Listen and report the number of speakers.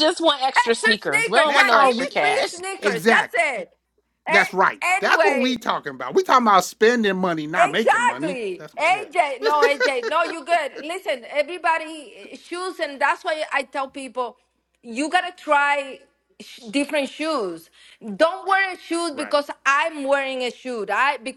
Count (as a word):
three